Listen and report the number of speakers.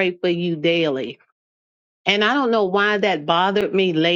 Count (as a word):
one